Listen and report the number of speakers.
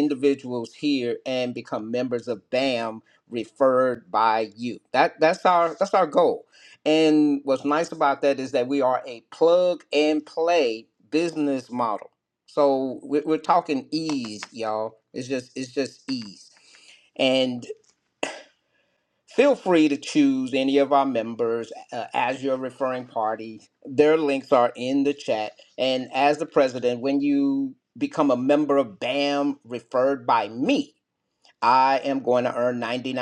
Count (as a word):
one